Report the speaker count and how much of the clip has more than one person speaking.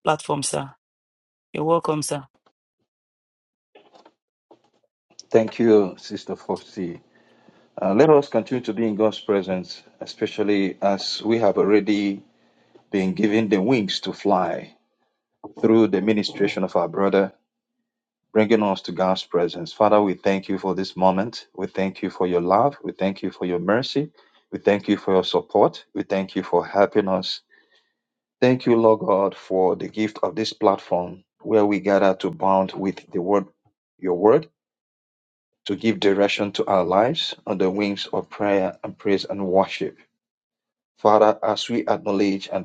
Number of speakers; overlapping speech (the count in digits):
2, no overlap